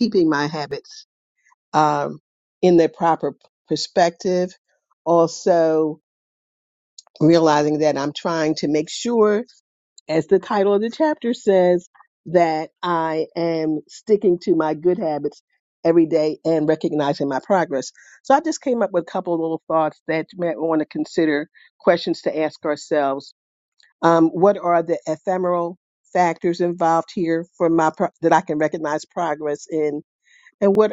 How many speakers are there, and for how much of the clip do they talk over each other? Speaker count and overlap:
1, no overlap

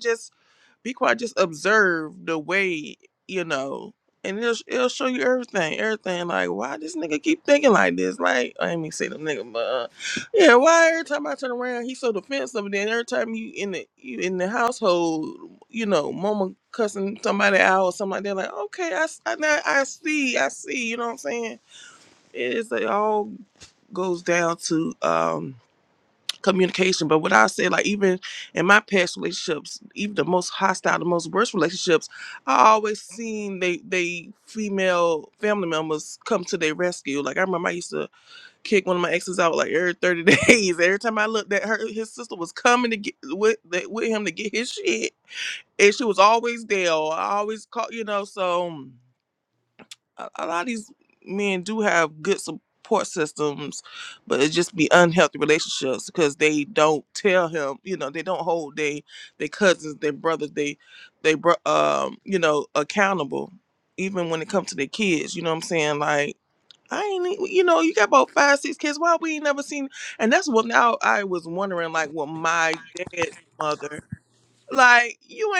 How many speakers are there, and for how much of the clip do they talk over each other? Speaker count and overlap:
1, no overlap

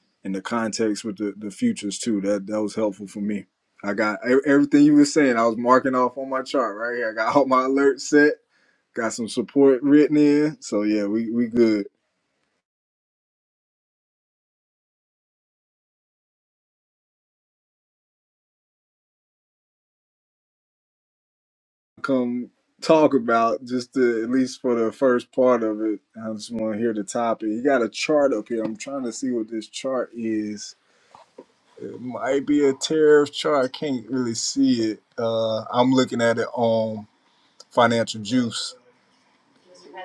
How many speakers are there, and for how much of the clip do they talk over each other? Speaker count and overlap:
1, no overlap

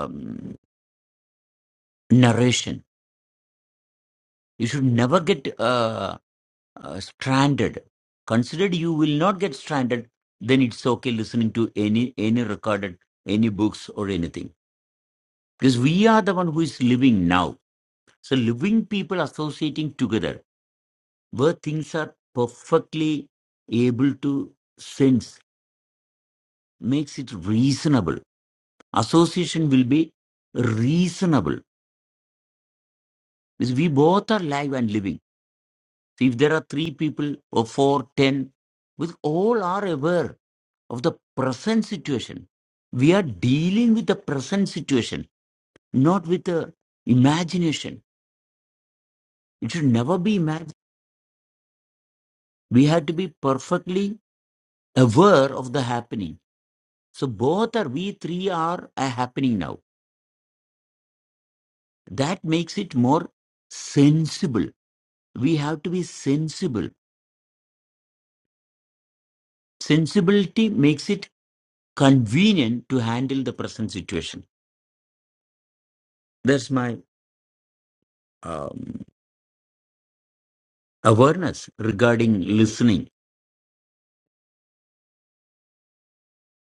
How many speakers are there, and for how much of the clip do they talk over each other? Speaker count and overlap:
1, no overlap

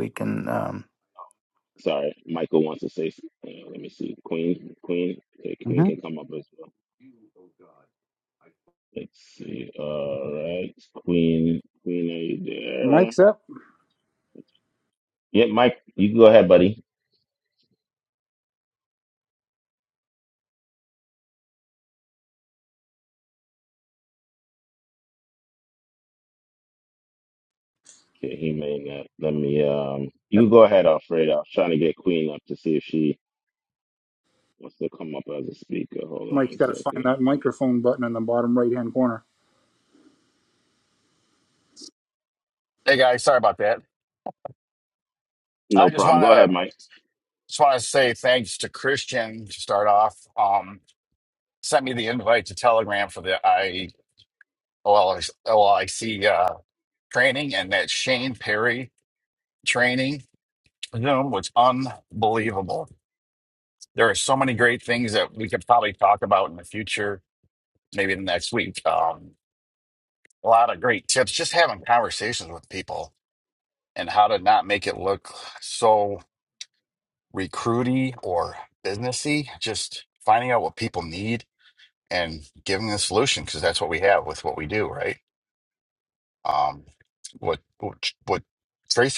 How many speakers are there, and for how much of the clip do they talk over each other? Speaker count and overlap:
4, about 2%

